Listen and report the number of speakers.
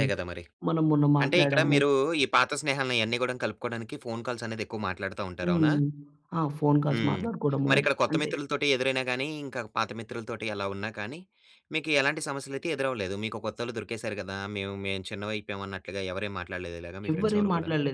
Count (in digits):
2